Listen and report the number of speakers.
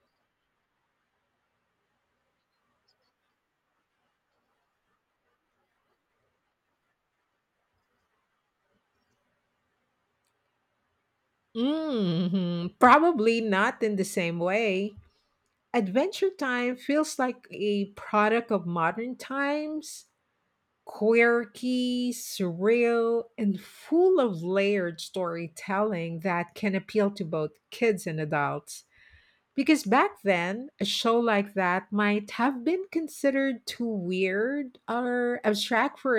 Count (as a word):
one